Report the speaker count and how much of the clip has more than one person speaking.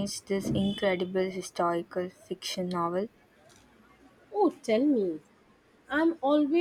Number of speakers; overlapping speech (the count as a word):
two, no overlap